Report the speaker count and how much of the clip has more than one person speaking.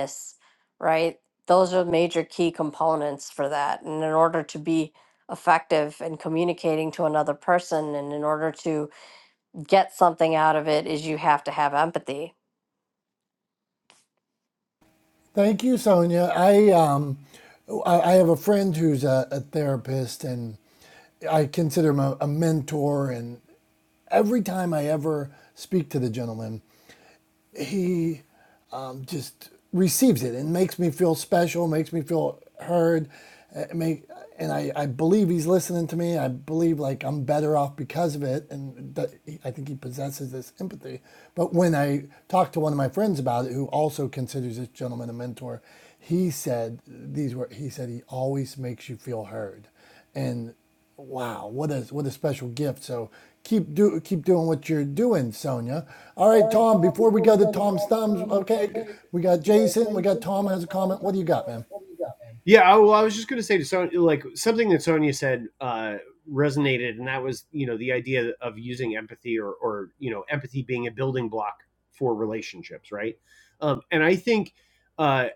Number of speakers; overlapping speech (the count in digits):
3, no overlap